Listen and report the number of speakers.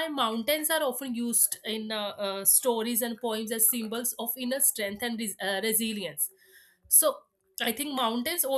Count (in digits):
1